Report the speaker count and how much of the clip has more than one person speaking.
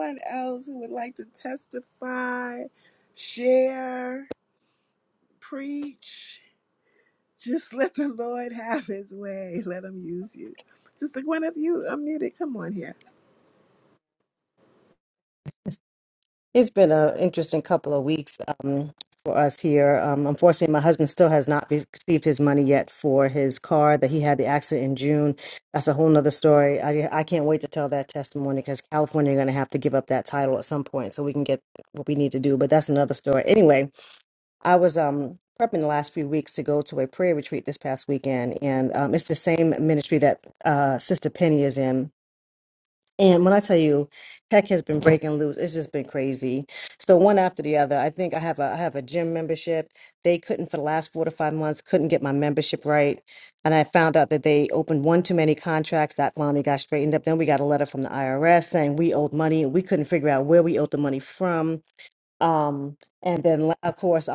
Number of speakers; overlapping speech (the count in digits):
2, no overlap